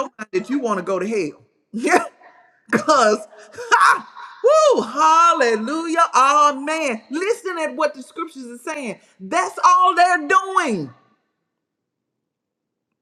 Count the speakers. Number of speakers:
1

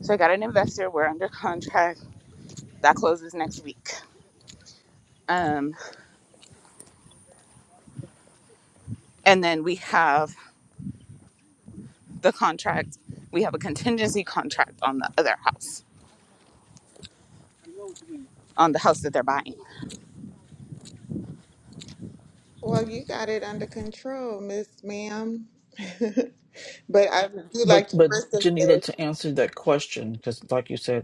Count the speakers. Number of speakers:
3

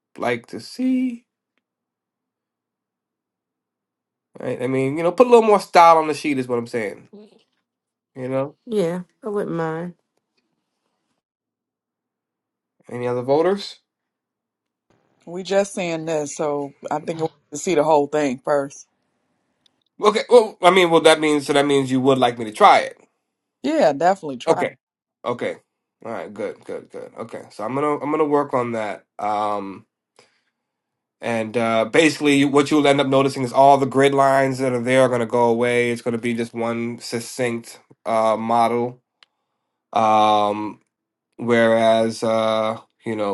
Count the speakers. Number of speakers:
3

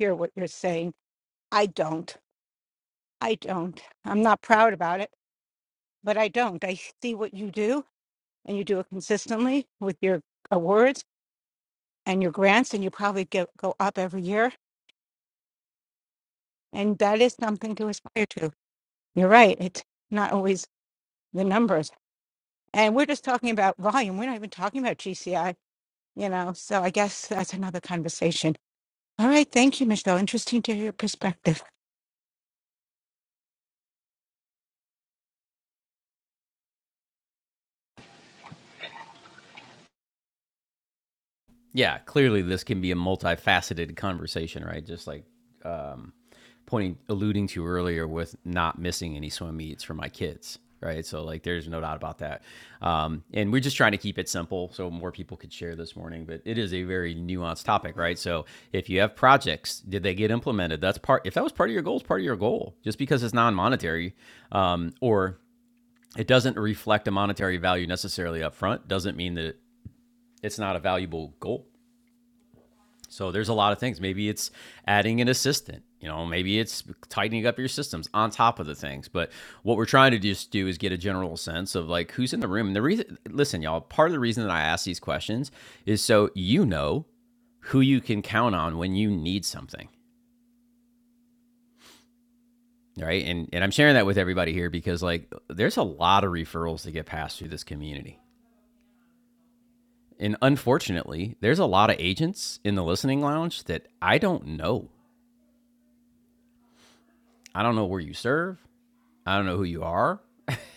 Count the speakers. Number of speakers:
2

